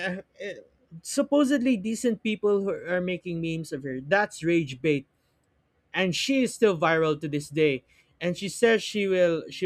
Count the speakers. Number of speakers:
1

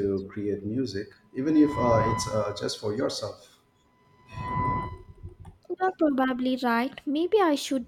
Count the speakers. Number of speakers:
2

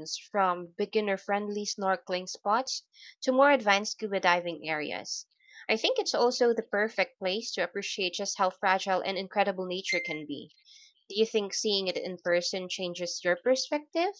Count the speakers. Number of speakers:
1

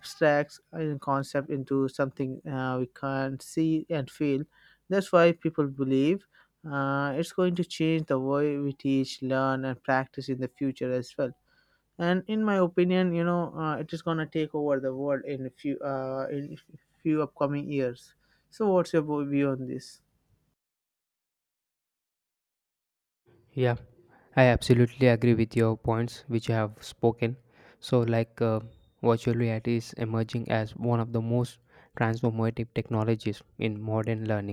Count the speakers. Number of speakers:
2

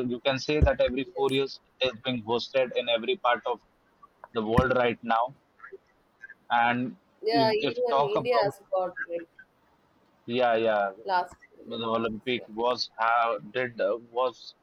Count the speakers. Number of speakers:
2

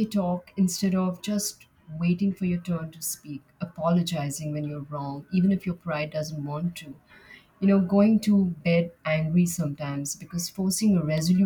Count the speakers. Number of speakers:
1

